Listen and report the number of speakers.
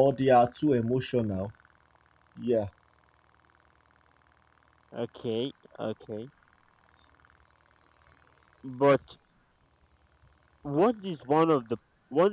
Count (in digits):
2